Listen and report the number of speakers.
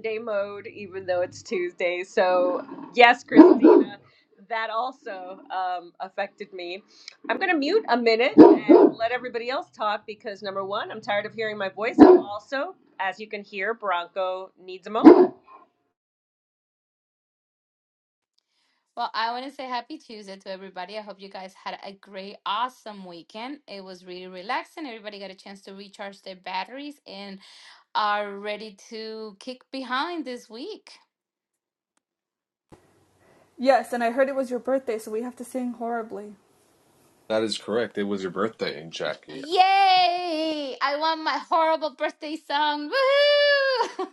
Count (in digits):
4